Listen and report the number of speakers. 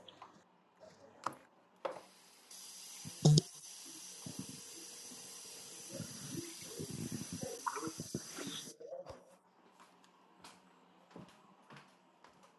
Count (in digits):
0